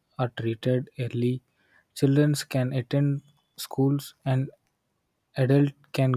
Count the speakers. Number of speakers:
one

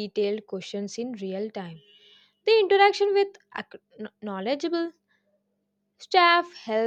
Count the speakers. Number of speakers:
one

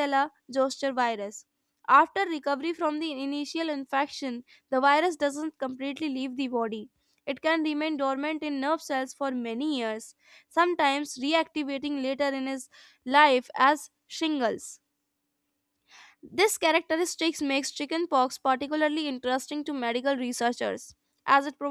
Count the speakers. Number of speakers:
one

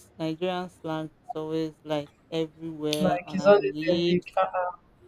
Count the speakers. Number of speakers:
two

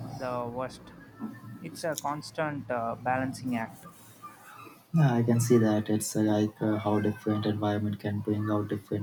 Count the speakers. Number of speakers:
two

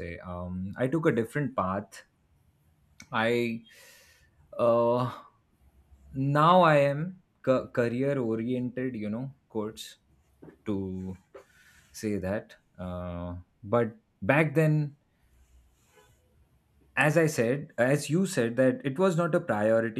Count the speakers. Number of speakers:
one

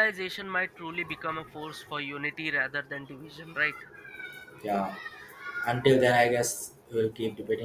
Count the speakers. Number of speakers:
two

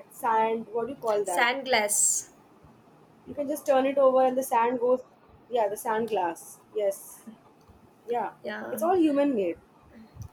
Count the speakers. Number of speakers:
two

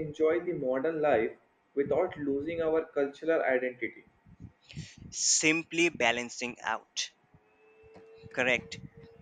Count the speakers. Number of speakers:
two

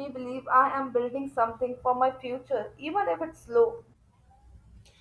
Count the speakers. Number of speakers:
one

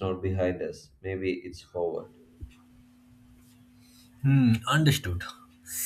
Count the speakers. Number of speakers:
two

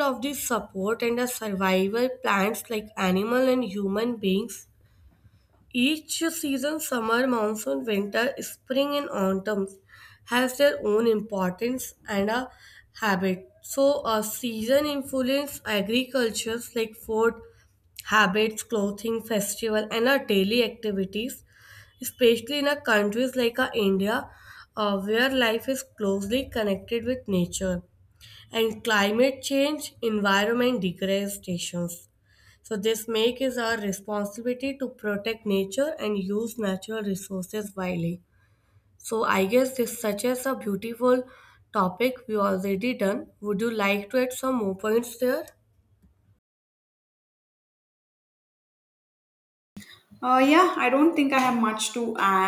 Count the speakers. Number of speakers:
two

